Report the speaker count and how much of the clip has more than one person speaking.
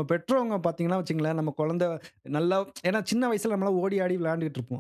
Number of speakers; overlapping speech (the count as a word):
one, no overlap